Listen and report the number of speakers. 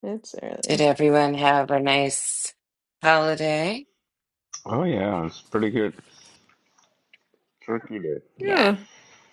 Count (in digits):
3